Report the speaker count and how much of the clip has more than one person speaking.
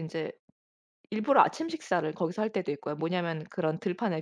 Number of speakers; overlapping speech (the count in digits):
1, no overlap